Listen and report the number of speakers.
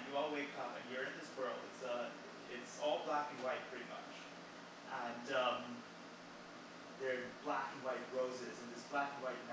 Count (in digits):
1